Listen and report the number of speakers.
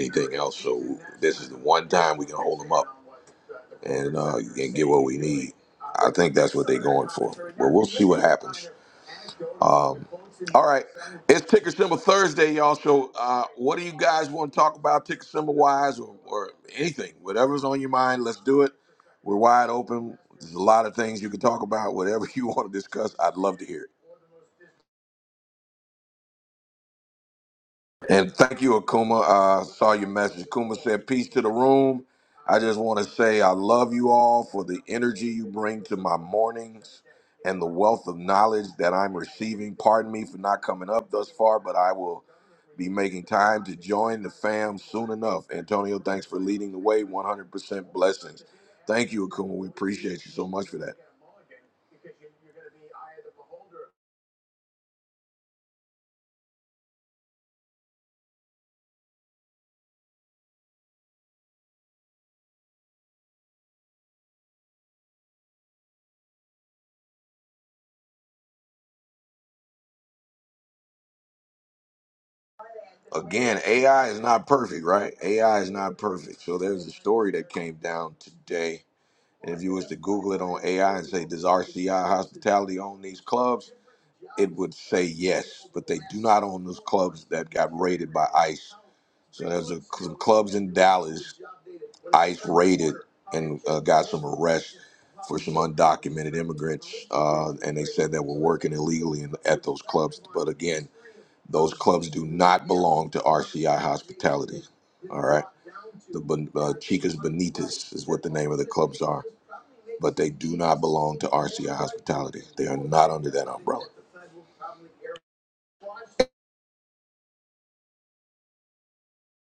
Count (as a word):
one